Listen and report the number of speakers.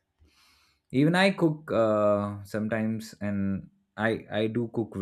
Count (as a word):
one